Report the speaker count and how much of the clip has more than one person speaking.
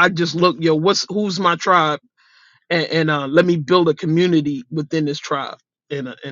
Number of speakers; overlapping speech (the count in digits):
1, no overlap